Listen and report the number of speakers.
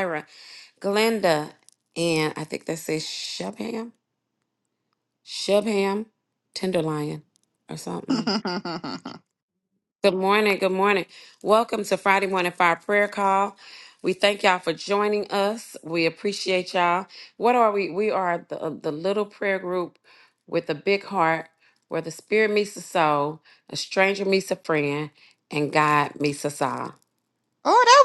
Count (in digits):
2